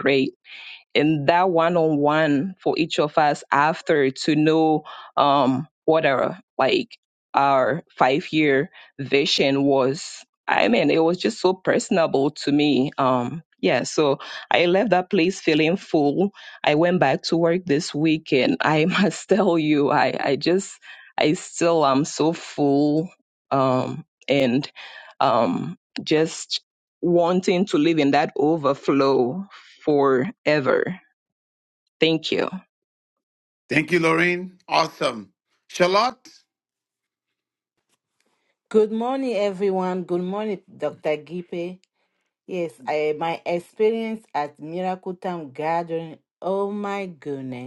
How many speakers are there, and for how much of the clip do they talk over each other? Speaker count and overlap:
three, no overlap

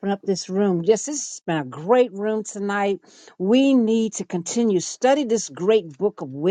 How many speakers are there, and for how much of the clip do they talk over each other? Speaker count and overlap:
one, no overlap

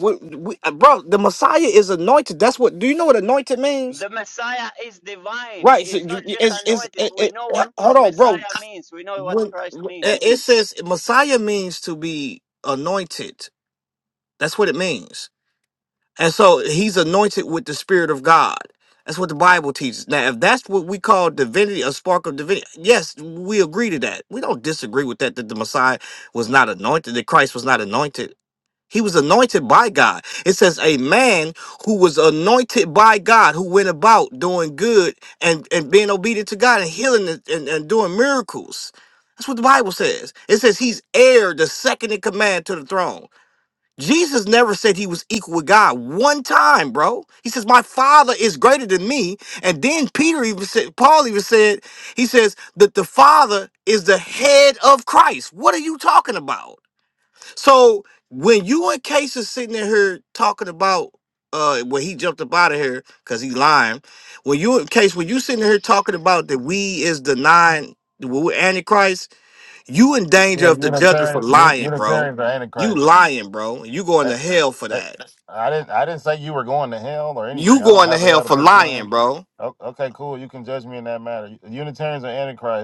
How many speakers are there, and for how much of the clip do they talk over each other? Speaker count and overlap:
three, about 8%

